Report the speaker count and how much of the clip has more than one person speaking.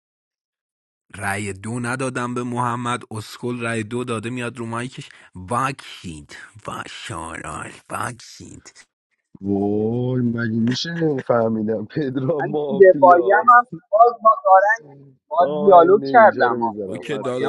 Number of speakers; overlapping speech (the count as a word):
three, about 18%